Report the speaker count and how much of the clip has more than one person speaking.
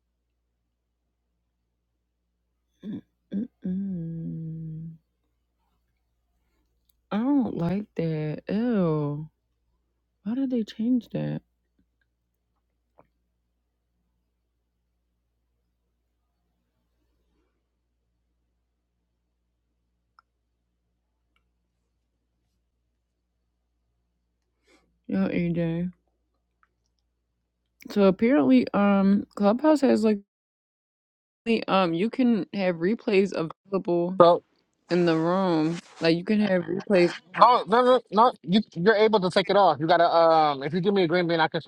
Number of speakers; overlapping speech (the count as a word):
two, under 1%